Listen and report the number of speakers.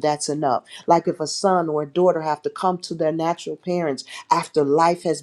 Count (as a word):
one